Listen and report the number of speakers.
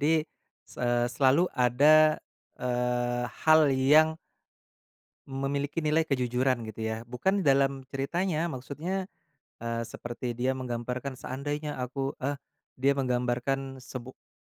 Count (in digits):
1